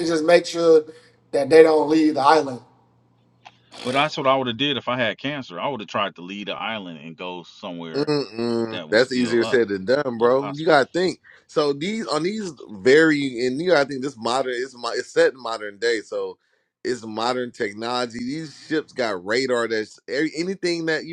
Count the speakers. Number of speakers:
three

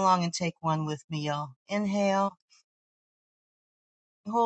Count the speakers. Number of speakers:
one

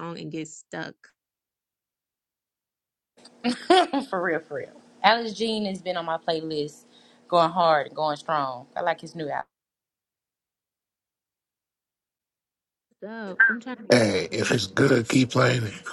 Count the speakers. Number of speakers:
three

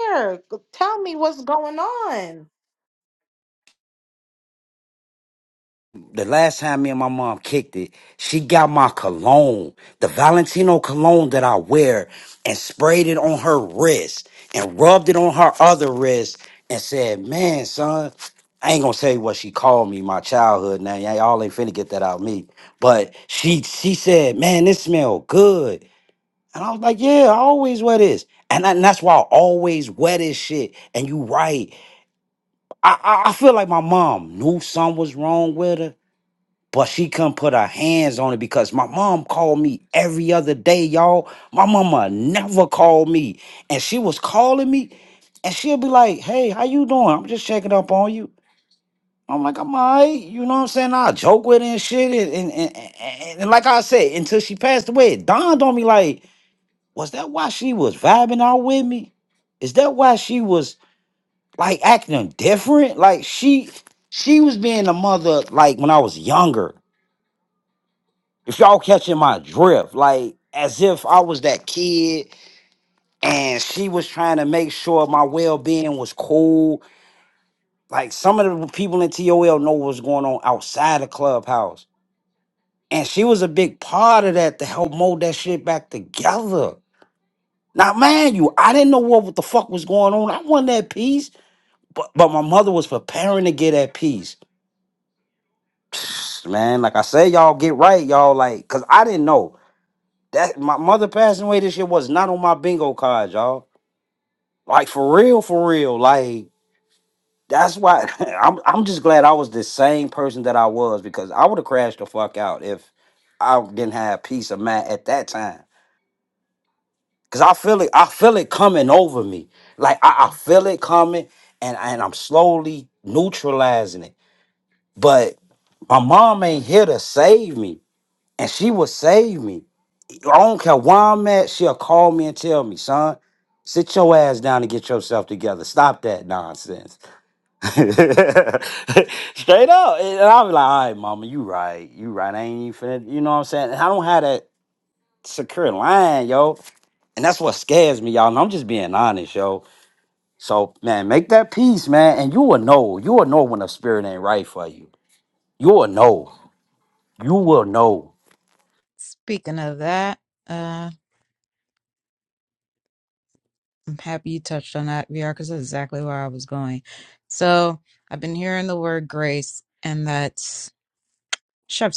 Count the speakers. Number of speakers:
three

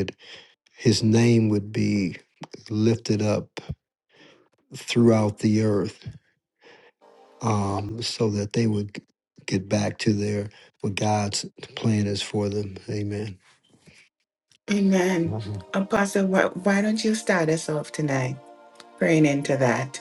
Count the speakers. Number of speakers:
two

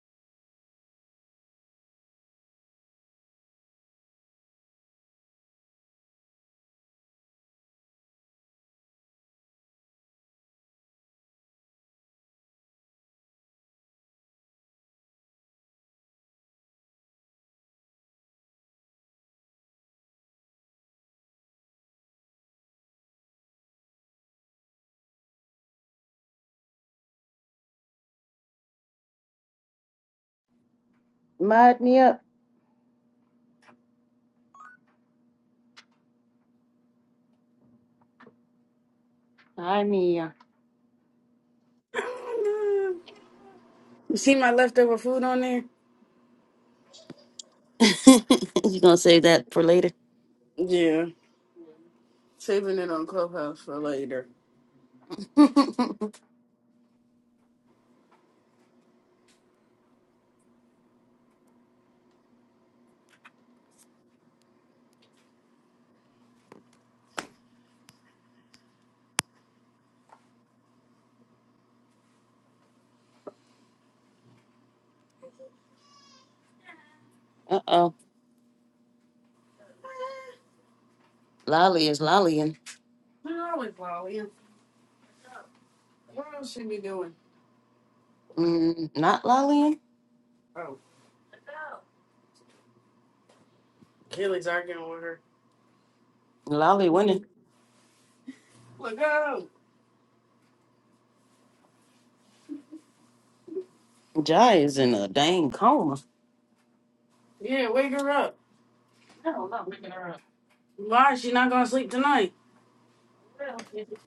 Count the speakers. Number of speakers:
two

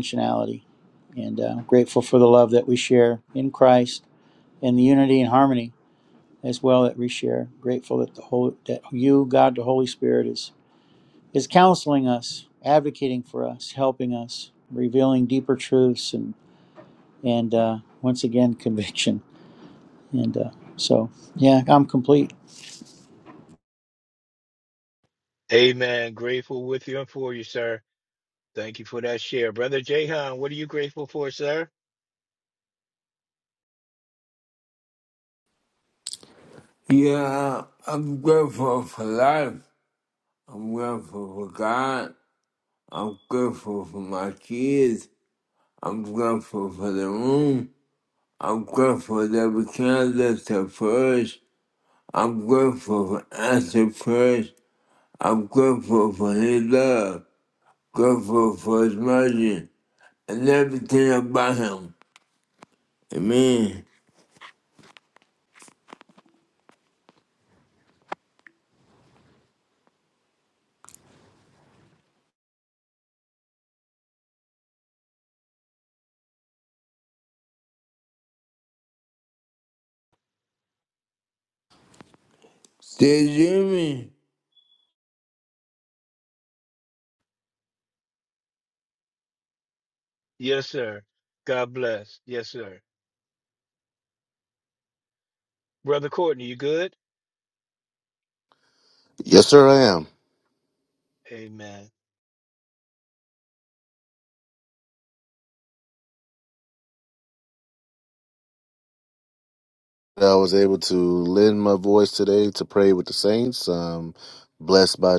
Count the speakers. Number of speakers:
four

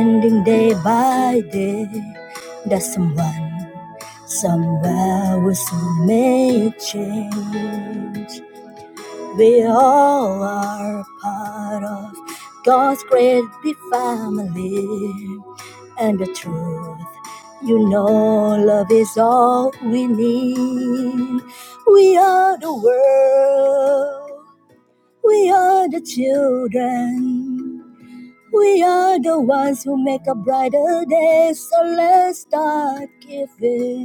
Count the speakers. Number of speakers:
one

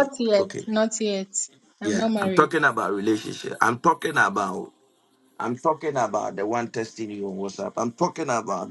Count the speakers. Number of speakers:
two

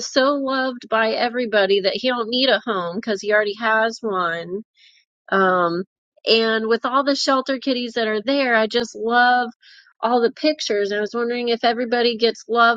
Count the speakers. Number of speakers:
one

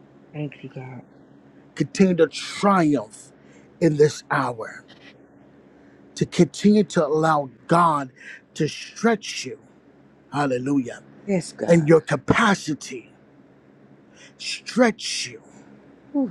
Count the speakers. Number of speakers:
two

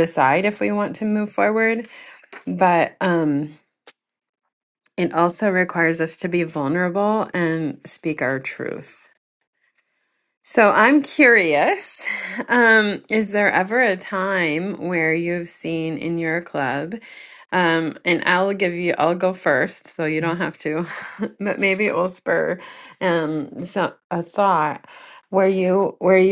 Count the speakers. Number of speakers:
one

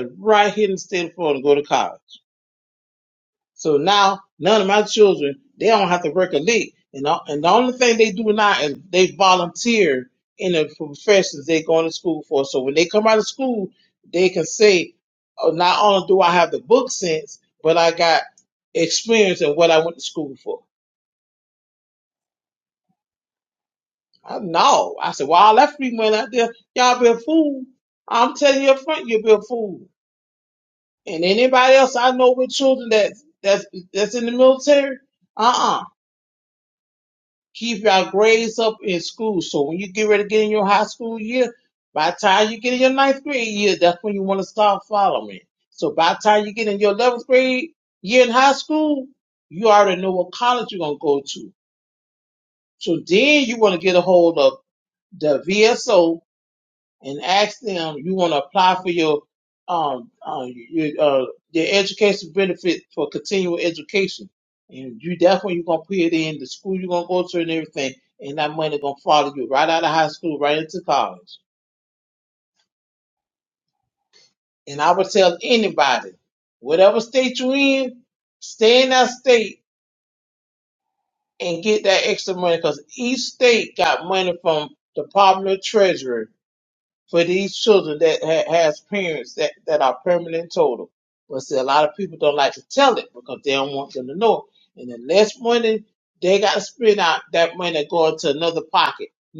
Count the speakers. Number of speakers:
one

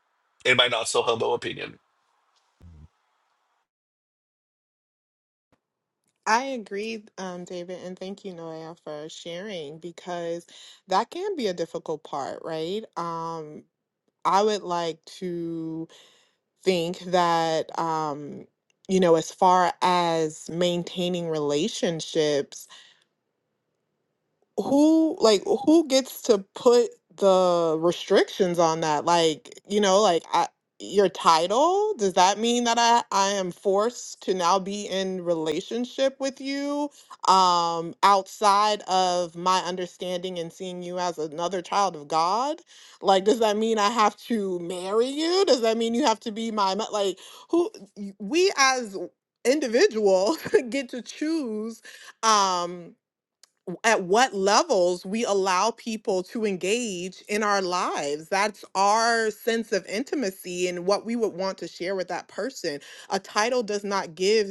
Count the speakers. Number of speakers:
two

